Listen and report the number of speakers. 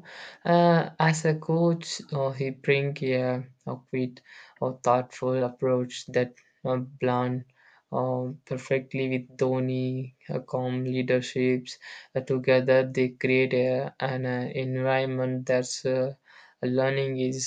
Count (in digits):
1